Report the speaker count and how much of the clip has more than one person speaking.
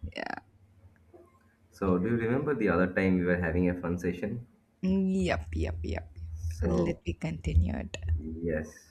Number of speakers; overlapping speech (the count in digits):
2, about 4%